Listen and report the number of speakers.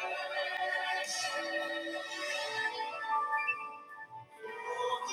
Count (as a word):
zero